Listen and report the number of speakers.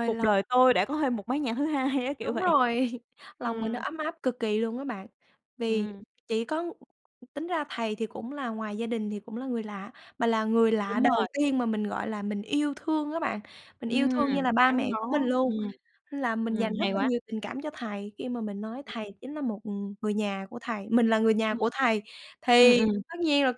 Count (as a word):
two